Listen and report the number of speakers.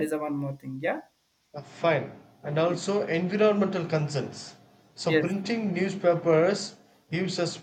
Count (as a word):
two